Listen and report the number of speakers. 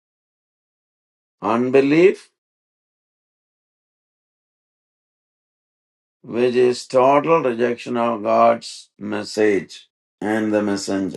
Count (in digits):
1